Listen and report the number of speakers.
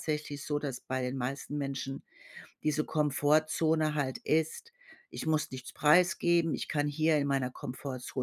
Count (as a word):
one